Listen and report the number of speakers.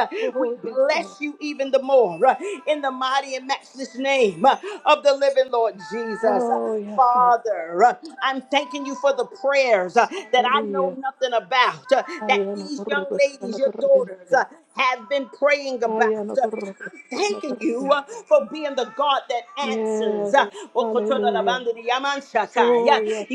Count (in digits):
2